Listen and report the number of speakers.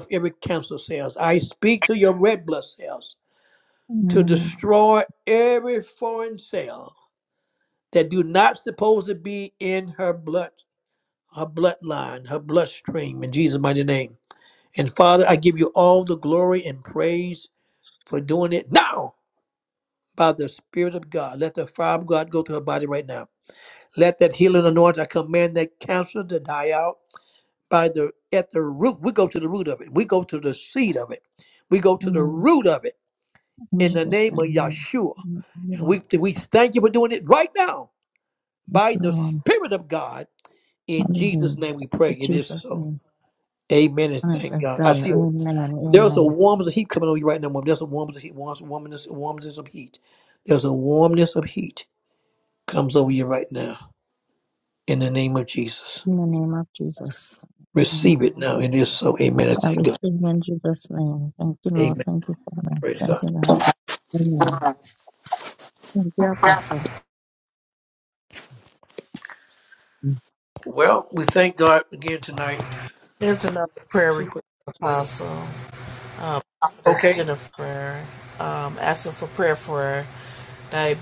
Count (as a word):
three